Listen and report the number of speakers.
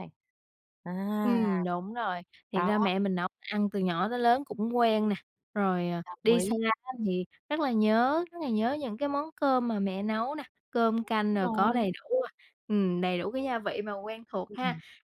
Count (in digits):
2